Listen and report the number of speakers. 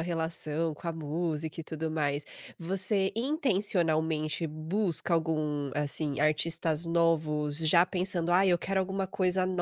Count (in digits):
1